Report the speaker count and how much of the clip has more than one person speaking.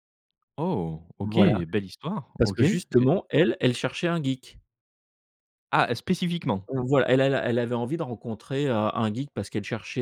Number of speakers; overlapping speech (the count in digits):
2, about 11%